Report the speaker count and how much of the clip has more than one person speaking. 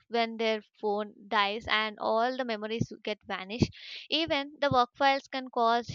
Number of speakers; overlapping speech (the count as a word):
one, no overlap